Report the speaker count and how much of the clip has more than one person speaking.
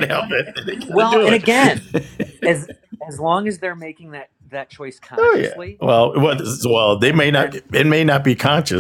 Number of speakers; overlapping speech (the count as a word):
two, about 22%